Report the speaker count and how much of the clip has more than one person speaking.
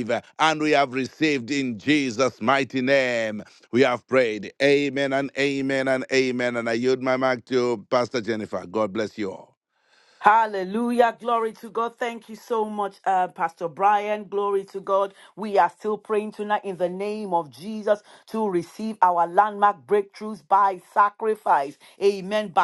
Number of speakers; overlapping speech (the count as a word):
two, no overlap